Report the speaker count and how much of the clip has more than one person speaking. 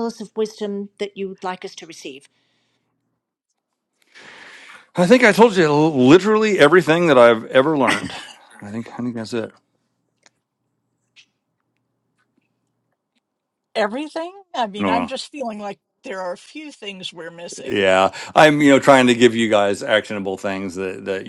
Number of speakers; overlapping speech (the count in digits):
3, about 2%